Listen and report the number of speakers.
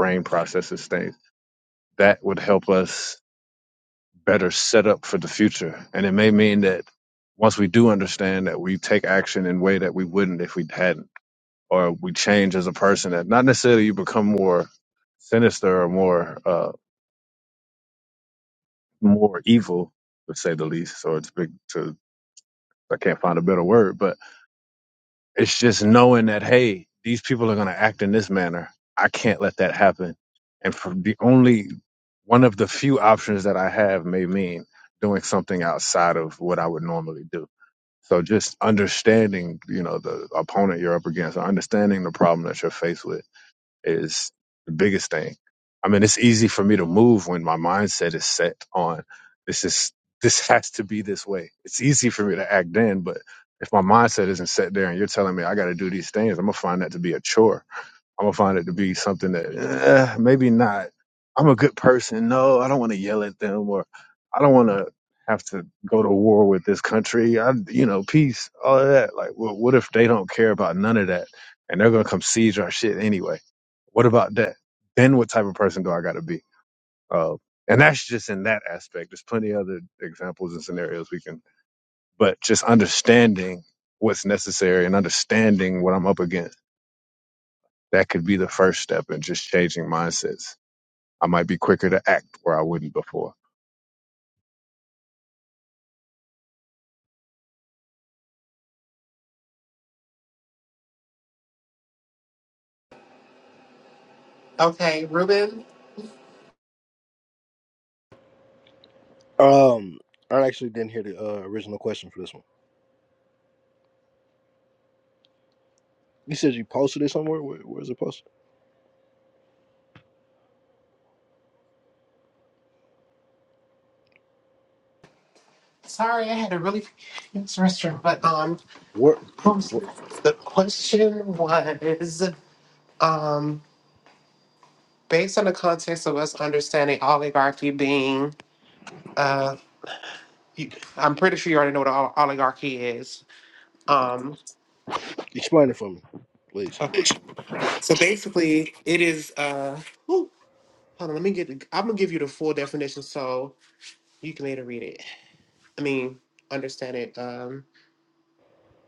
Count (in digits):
3